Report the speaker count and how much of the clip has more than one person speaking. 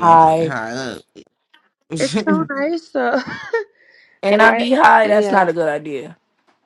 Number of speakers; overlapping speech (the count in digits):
3, about 23%